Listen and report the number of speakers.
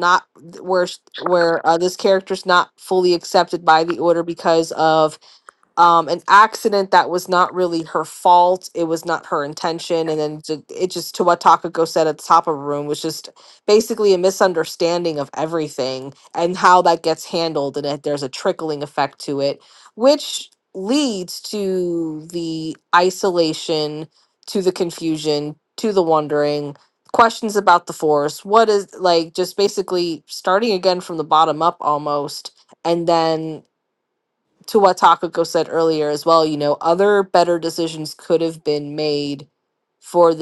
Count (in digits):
1